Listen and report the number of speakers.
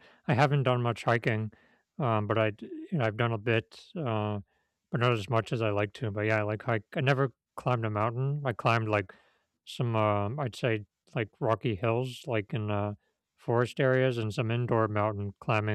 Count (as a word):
one